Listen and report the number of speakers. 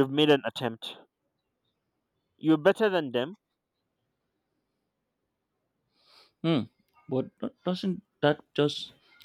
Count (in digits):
2